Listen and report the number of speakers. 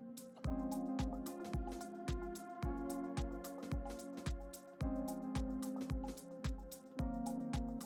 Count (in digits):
0